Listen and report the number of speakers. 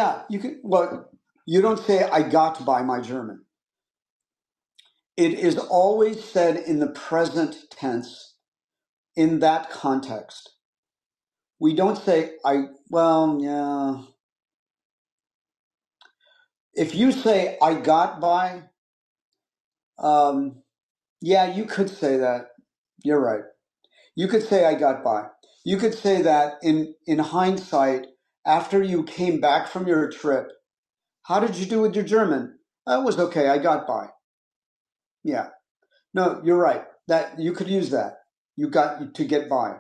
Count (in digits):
1